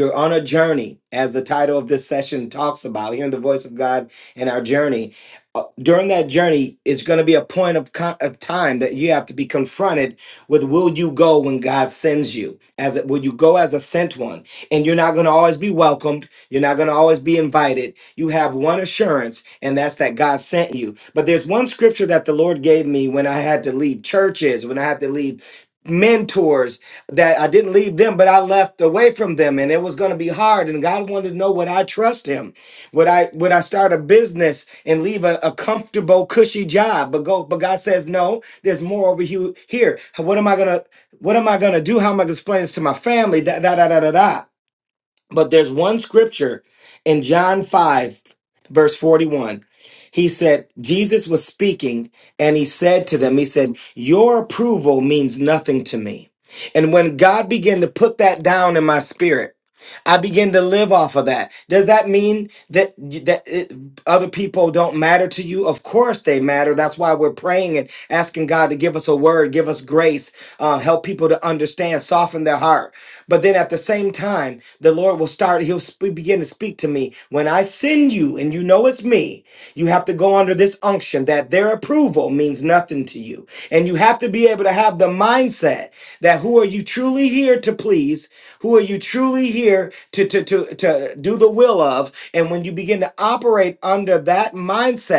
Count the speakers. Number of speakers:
one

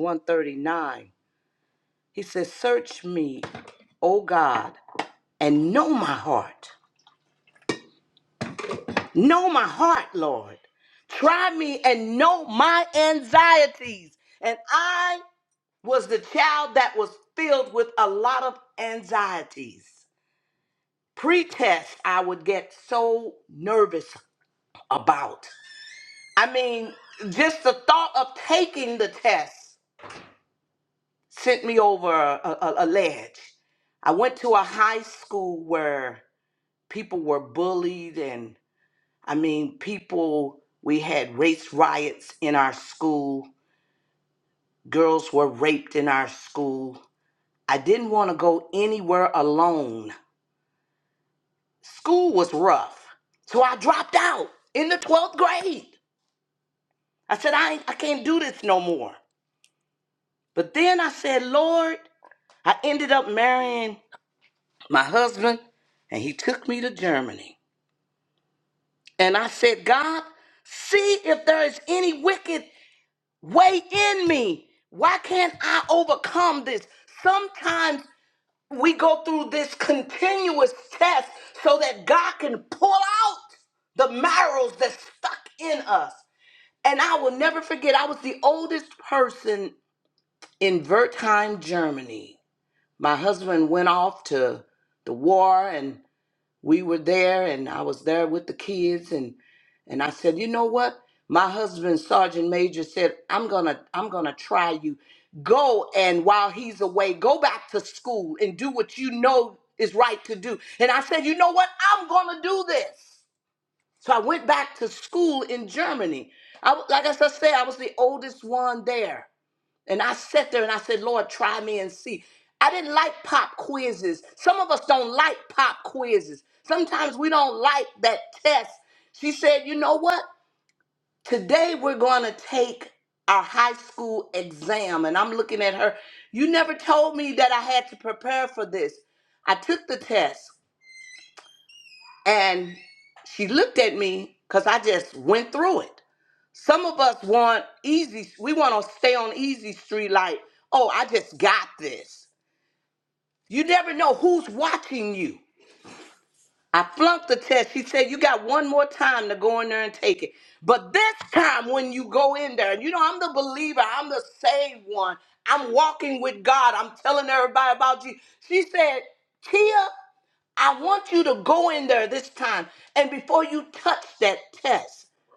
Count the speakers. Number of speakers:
one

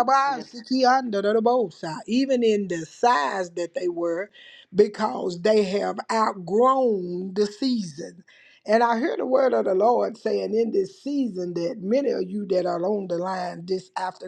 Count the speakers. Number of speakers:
one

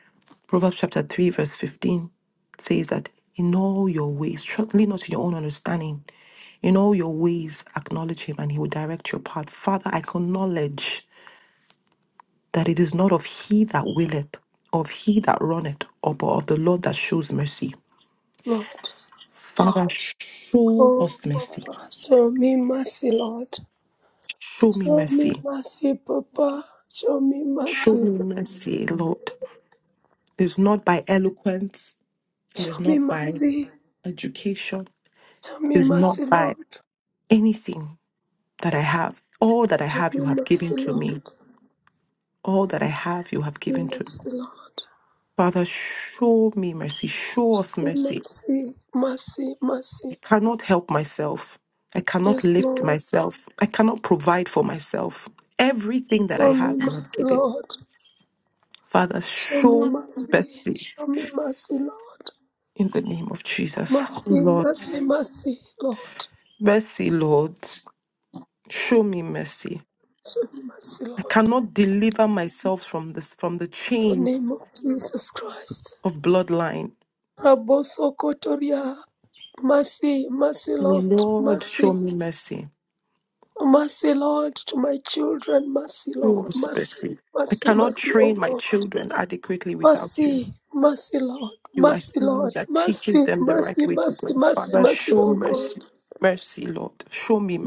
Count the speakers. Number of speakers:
two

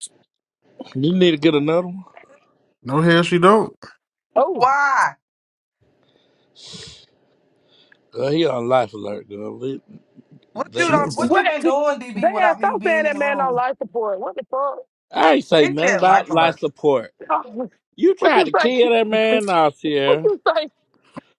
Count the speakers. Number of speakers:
four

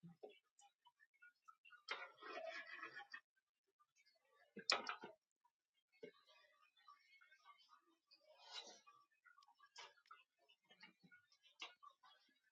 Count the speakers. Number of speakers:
zero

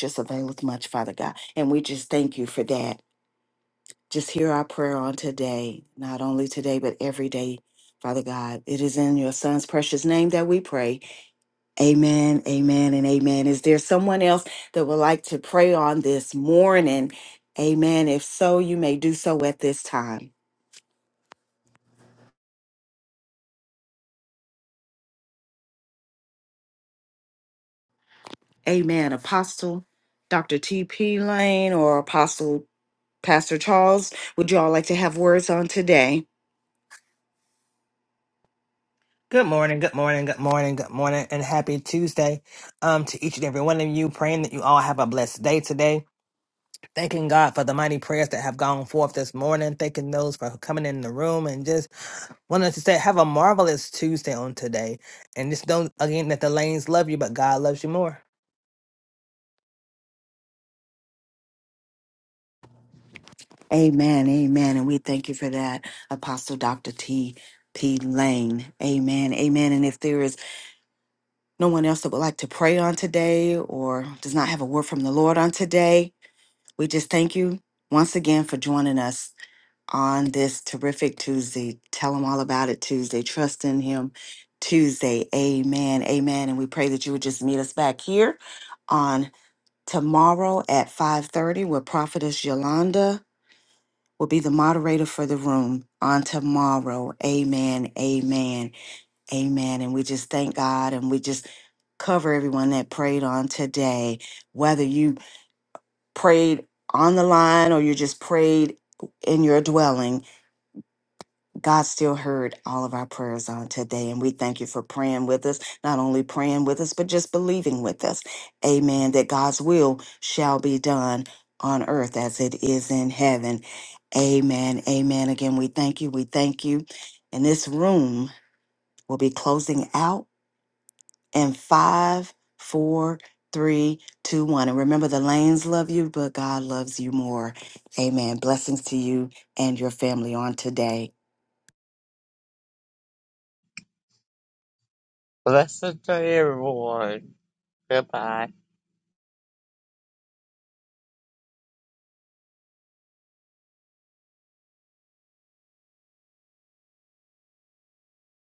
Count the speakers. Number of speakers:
three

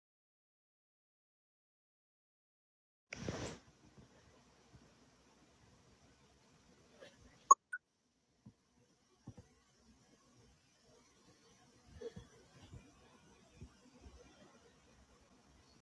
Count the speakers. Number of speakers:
zero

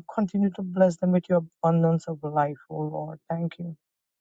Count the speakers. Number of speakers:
one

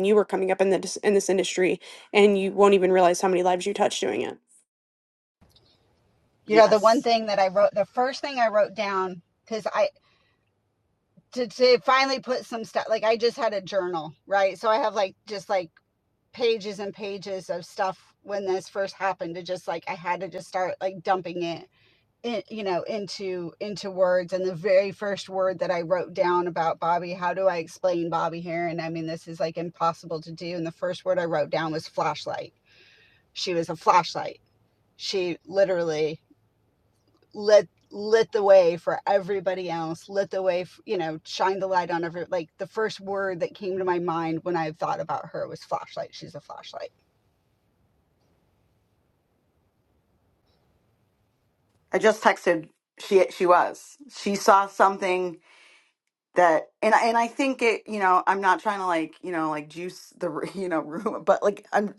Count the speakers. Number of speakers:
three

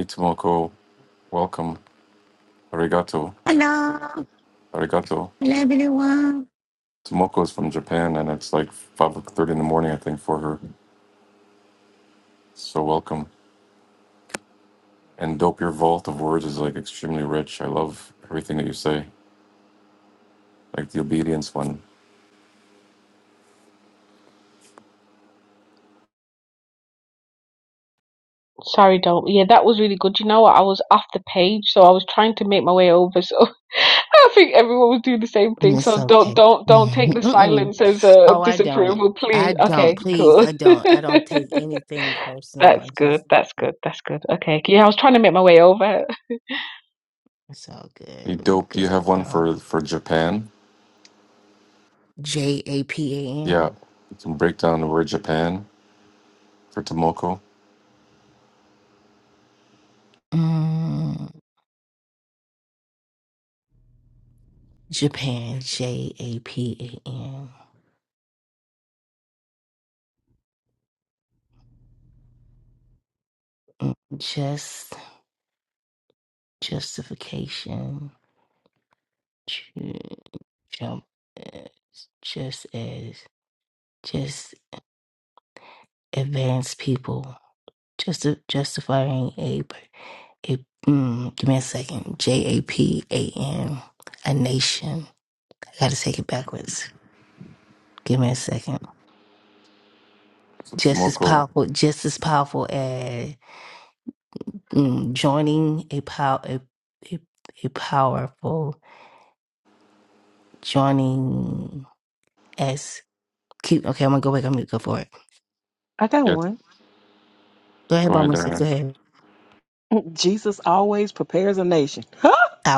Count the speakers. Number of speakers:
five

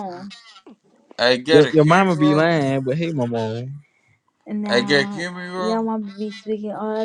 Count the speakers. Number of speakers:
three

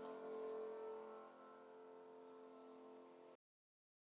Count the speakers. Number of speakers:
zero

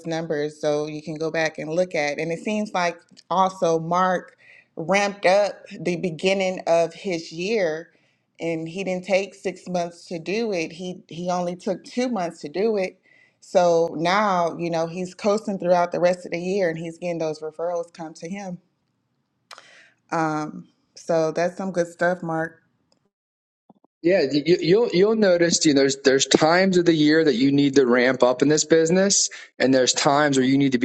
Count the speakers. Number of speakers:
two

